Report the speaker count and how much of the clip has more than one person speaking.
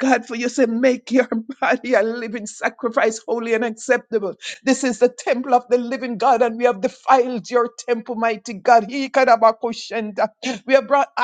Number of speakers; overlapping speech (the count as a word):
one, no overlap